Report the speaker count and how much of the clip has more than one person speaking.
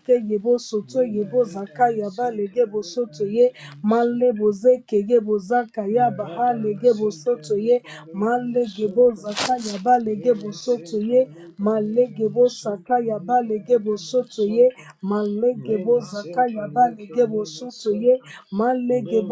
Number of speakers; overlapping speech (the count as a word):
two, about 70%